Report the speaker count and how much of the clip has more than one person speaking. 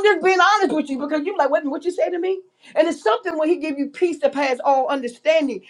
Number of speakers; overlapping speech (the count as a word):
one, no overlap